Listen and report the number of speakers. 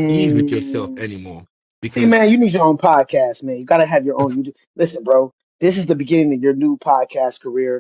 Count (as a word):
two